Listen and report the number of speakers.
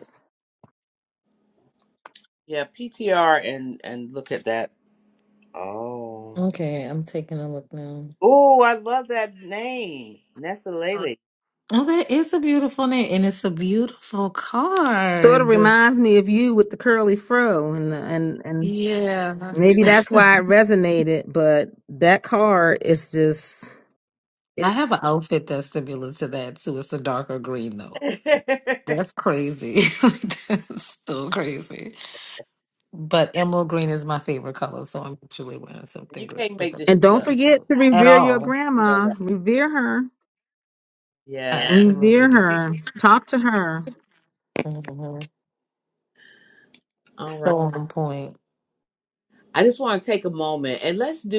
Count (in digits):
3